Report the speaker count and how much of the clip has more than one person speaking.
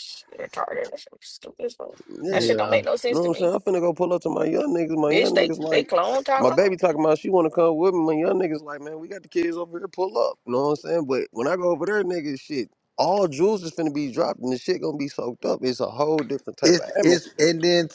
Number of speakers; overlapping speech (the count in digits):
3, about 17%